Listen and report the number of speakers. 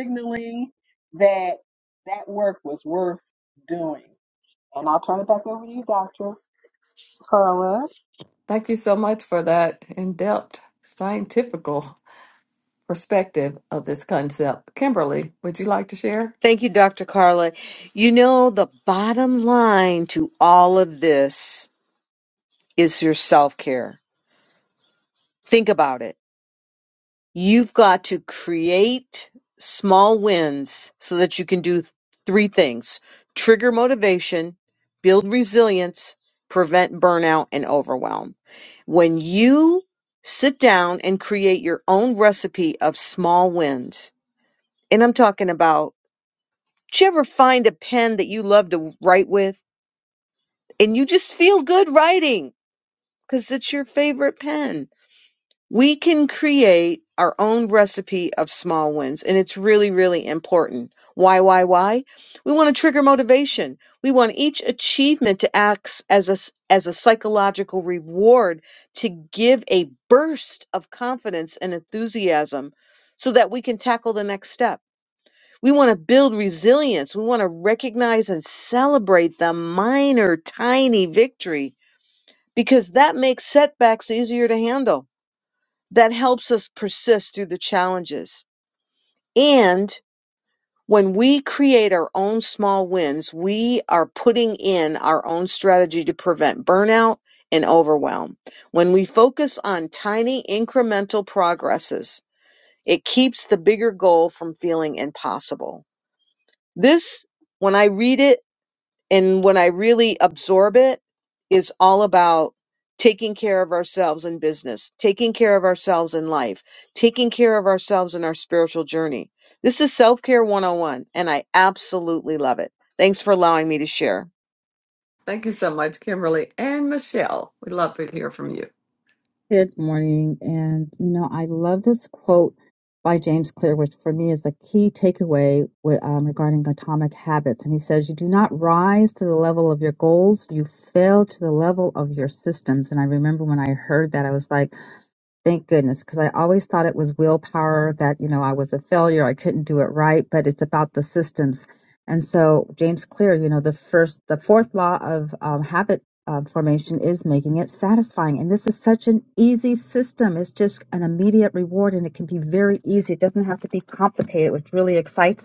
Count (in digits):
4